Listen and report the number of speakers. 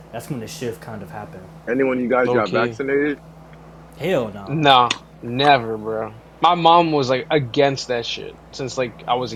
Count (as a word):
three